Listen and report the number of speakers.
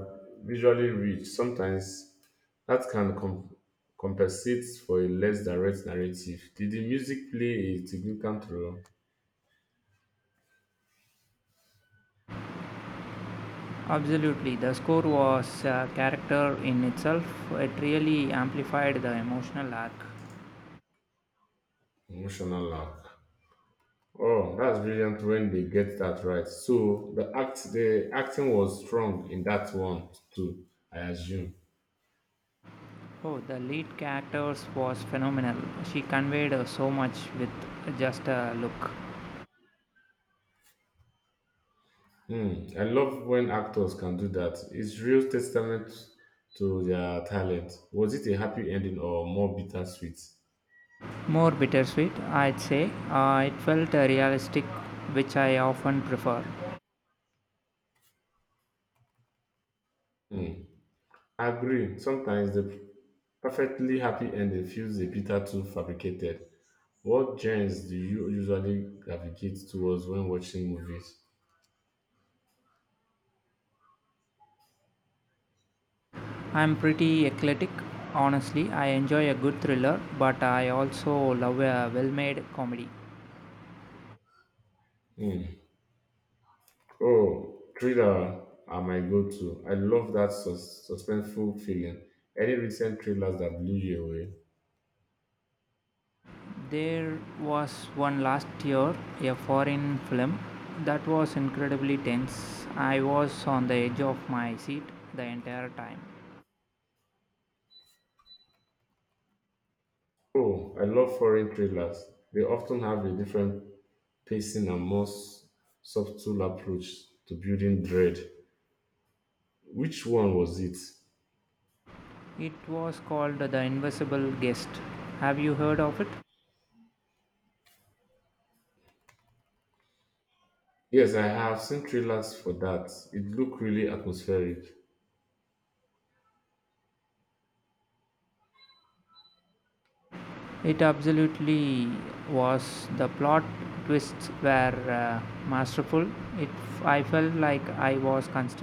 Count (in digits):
2